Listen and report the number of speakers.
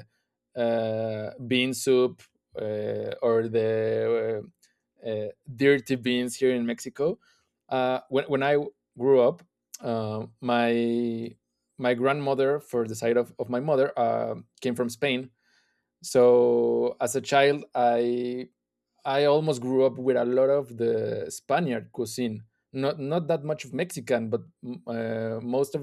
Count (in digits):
1